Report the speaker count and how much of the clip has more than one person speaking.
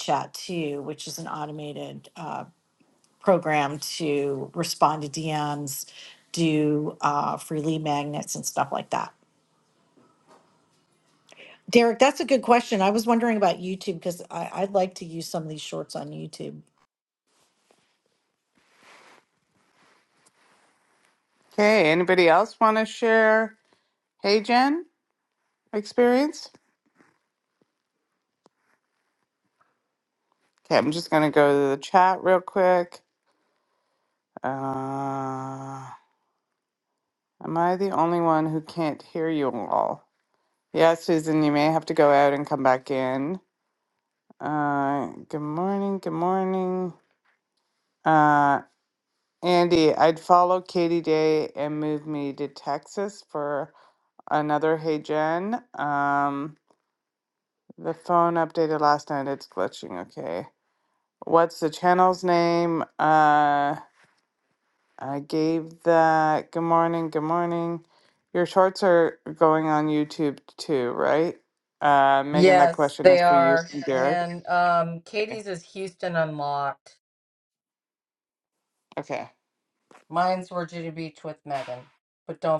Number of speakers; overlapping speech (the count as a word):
three, about 2%